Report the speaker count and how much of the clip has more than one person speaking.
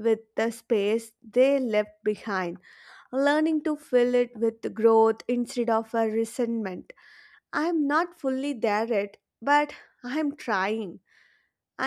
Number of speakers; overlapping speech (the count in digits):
1, no overlap